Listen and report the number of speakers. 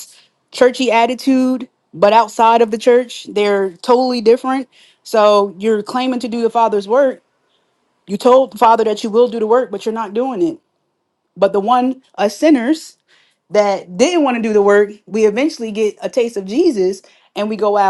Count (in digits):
1